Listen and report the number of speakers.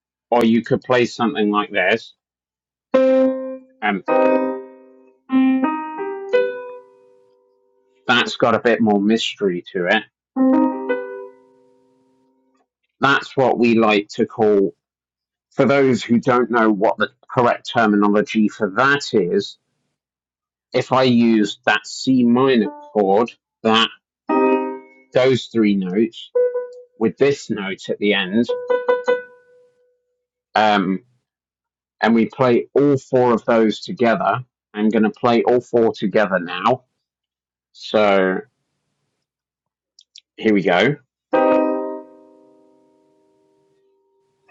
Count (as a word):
one